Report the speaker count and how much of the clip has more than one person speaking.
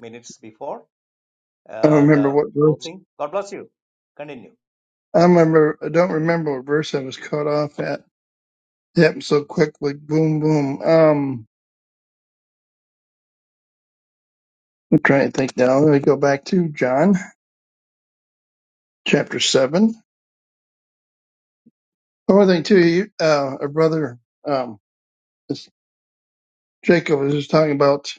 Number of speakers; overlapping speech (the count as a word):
two, about 4%